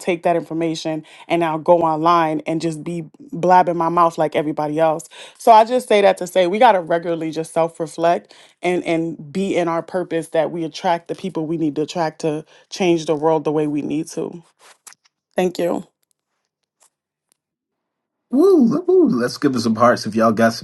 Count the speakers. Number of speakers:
two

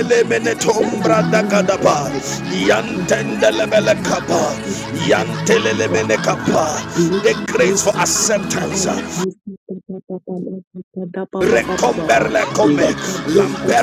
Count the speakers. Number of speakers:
two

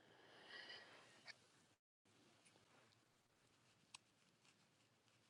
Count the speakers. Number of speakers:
zero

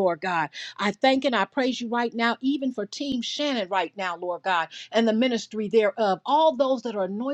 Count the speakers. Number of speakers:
one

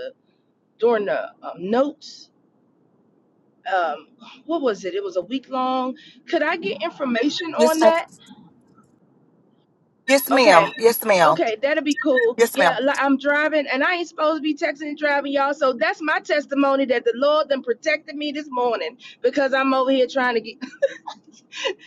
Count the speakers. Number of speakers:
two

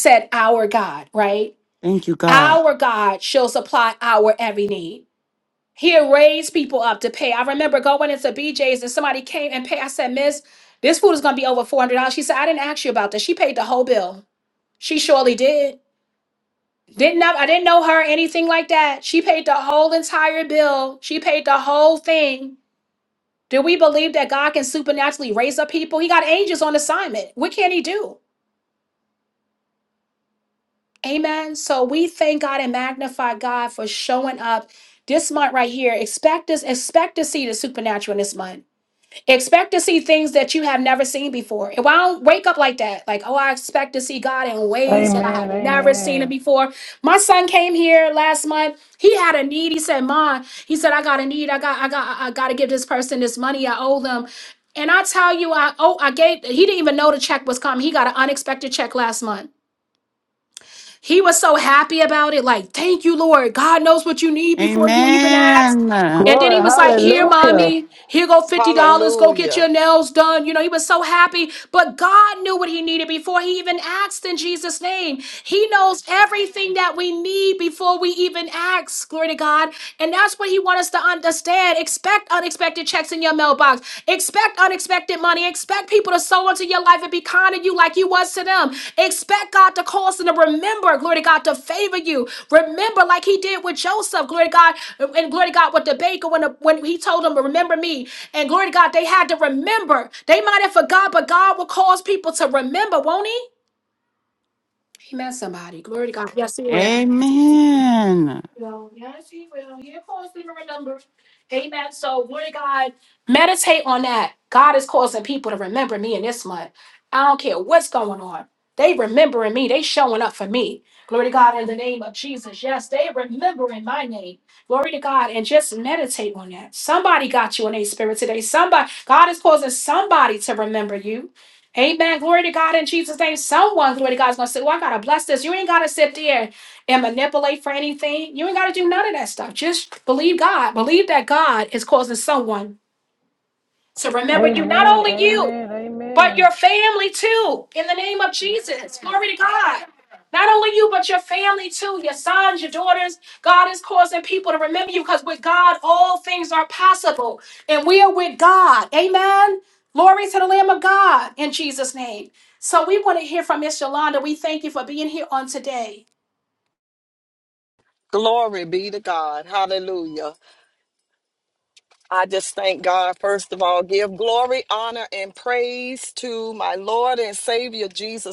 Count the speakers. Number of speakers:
four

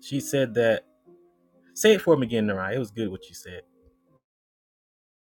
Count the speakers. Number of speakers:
one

